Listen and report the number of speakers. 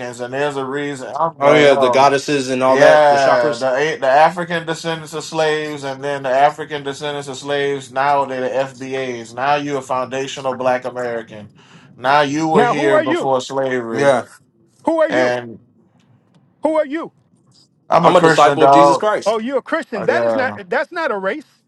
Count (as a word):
three